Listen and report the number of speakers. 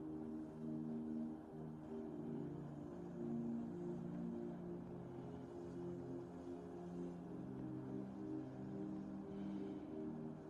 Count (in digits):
0